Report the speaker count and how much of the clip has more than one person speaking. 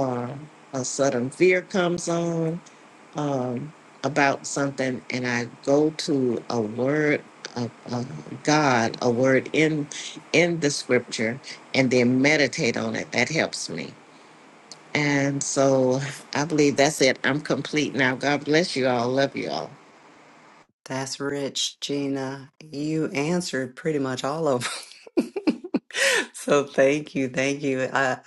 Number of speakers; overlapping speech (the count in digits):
2, no overlap